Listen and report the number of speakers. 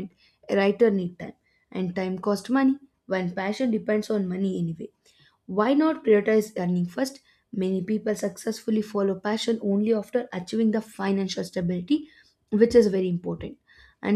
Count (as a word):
one